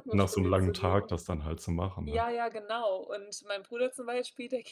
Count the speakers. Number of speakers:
2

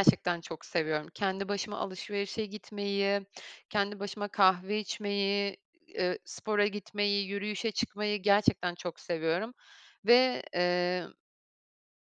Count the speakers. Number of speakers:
1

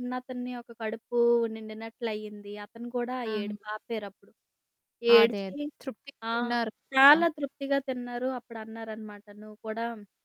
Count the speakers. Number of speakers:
2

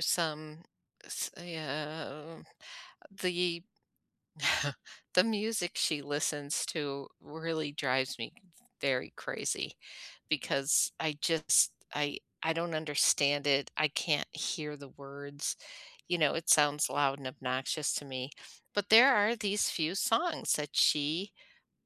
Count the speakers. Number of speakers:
1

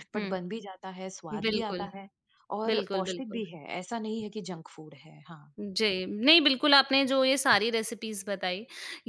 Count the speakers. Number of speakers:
2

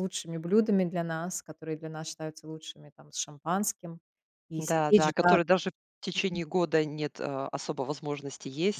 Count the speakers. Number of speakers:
2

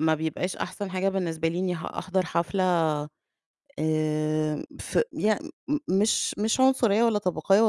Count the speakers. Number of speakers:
1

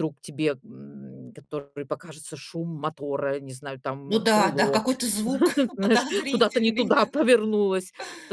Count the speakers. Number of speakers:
2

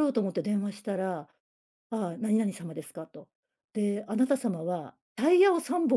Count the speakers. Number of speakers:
1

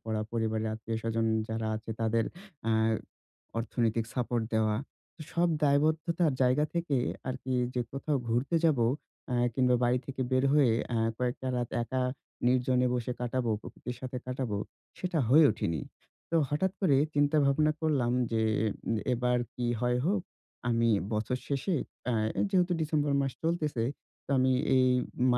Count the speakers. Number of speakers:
1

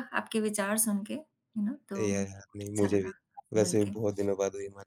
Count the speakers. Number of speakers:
2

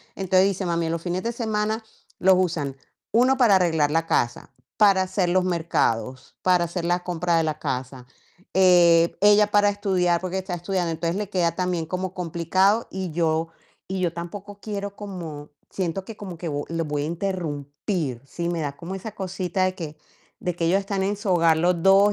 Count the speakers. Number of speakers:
1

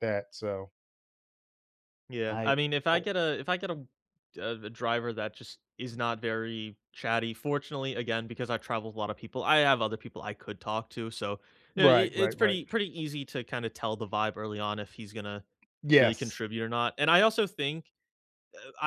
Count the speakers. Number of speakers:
2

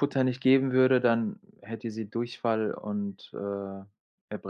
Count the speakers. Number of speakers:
1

